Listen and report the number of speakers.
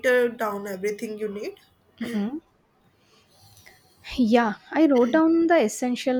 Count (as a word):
two